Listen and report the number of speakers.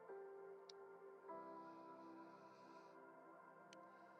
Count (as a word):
zero